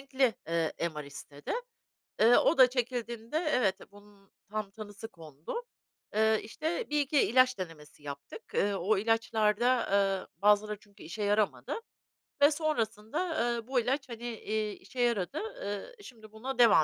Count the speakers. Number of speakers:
1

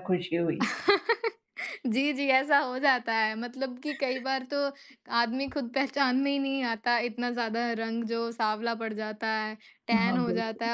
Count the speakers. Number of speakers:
2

